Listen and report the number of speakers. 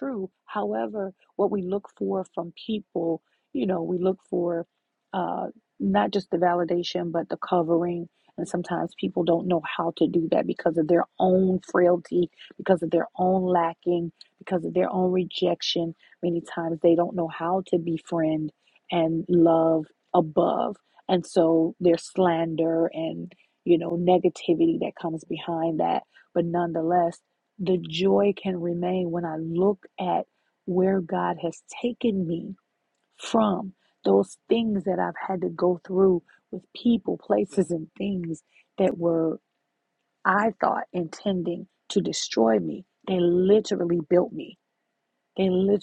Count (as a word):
one